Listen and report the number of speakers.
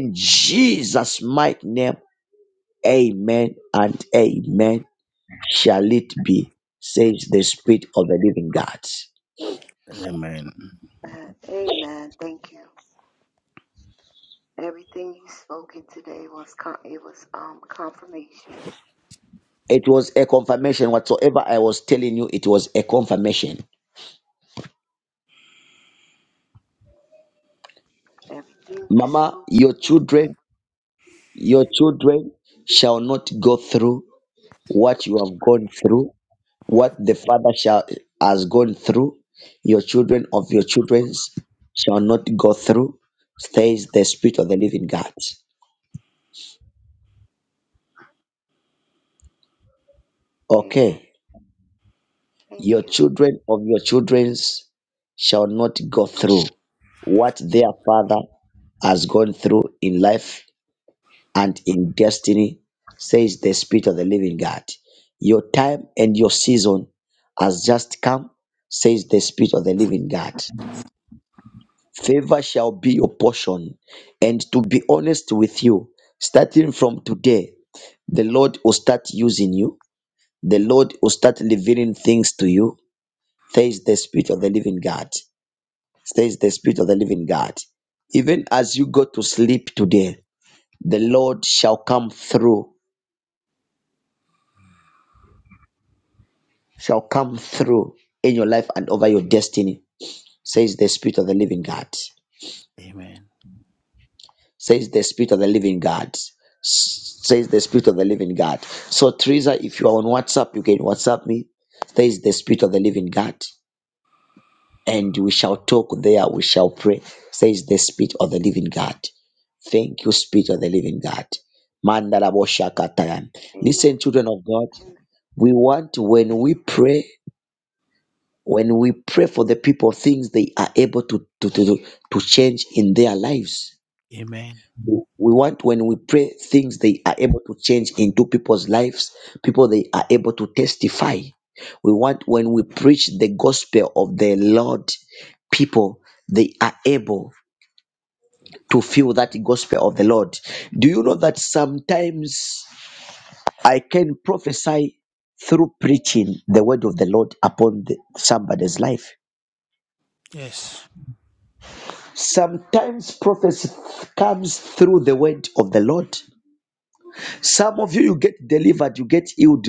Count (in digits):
3